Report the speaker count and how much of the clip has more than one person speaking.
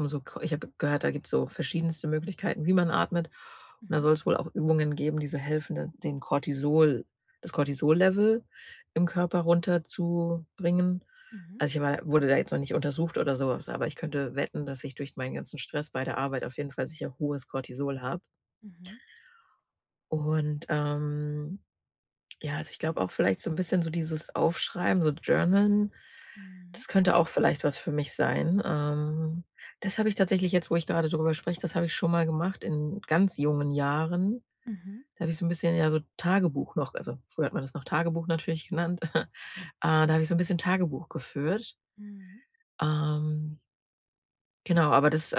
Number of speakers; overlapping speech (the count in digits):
2, about 1%